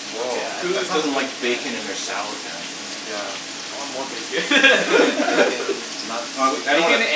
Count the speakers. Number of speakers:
three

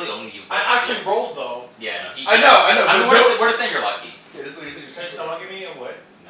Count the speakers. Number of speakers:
three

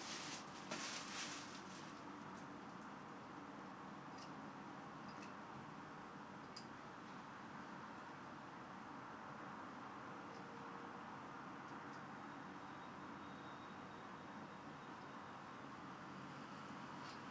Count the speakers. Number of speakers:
zero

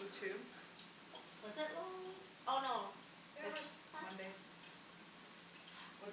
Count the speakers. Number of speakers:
two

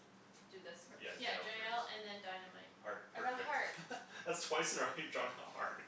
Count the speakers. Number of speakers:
three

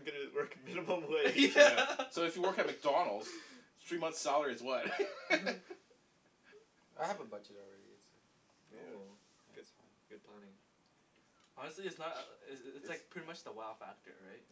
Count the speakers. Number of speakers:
four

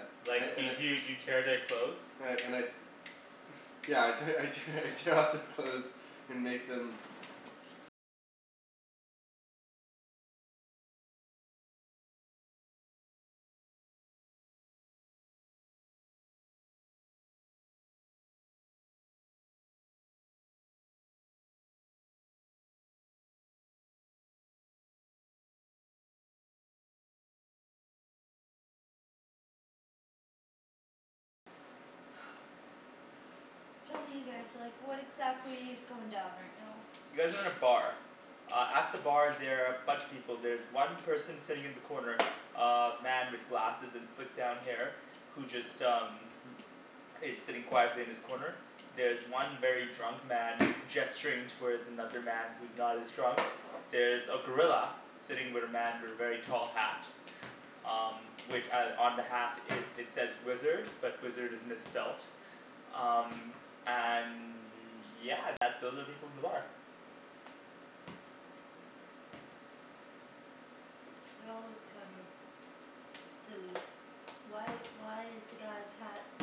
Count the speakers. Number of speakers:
three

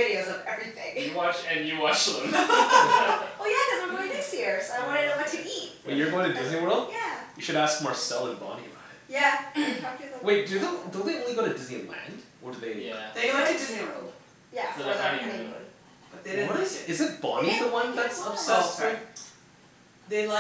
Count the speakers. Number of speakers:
four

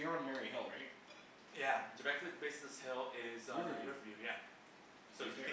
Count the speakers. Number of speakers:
two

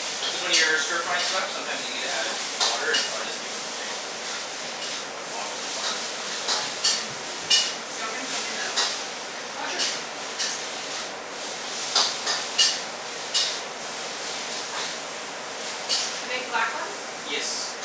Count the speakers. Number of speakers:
two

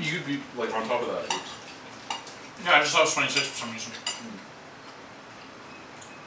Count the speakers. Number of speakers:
two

